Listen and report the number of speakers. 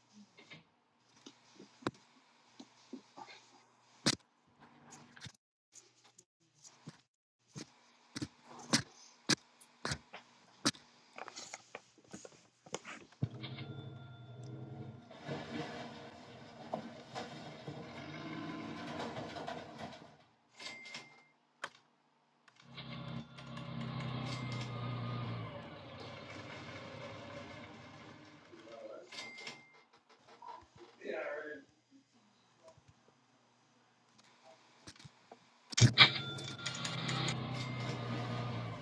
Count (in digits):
0